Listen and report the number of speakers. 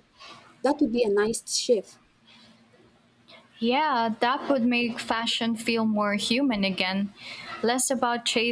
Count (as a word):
two